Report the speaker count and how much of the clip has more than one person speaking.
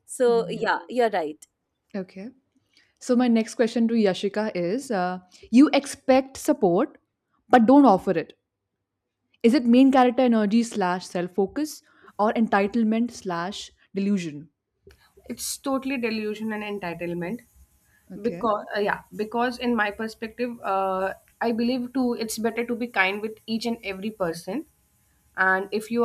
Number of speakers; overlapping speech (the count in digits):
3, about 2%